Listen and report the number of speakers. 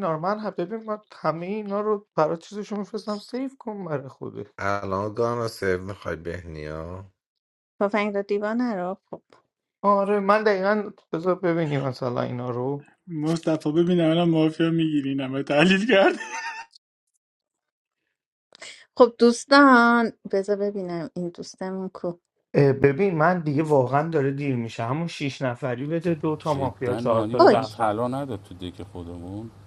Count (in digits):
5